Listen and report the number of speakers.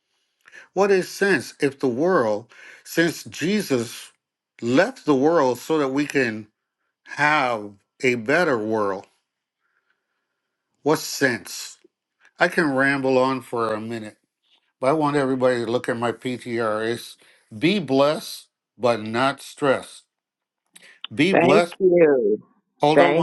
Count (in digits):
2